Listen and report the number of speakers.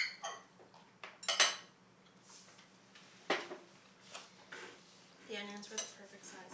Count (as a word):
one